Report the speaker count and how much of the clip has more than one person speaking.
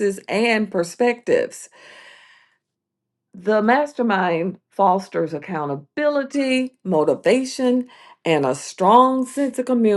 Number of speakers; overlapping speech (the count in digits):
1, no overlap